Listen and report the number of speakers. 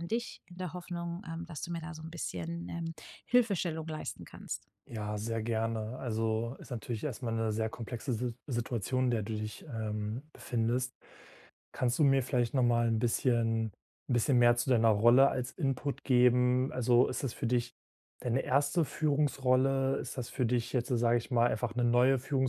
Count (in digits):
2